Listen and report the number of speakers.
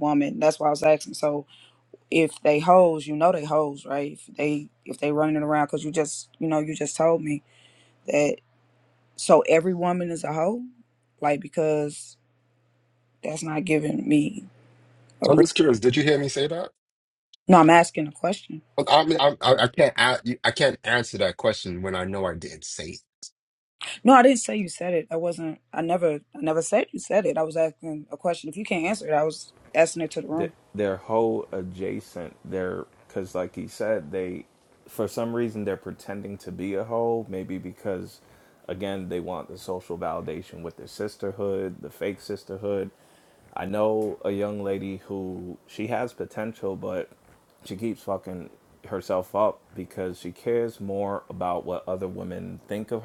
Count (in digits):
3